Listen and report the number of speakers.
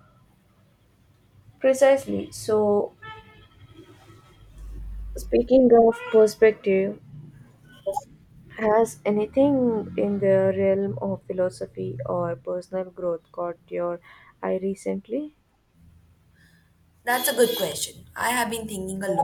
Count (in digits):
2